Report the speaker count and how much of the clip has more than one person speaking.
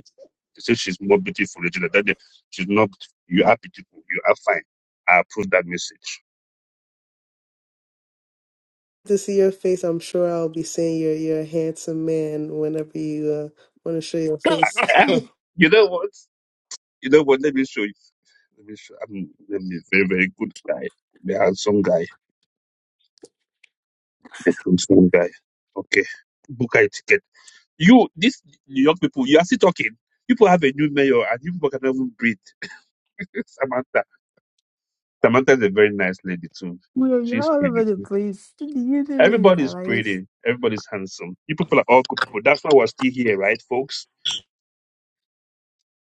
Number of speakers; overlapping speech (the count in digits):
3, about 3%